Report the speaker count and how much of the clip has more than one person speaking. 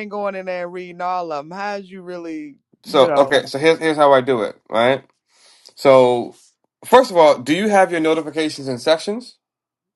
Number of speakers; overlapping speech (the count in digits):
2, about 5%